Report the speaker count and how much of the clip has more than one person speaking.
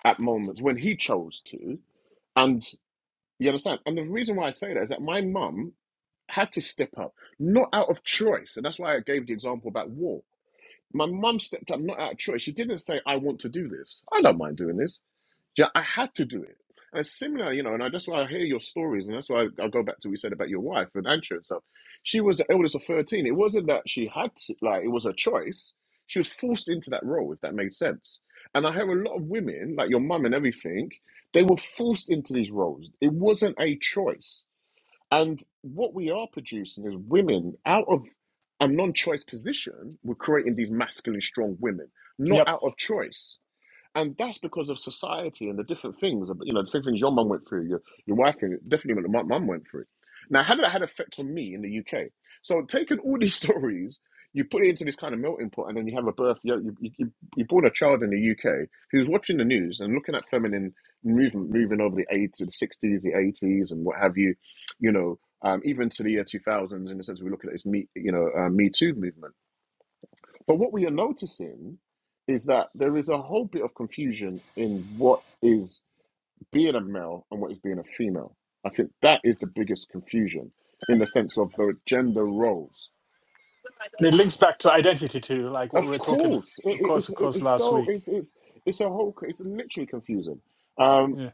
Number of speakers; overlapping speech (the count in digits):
2, about 2%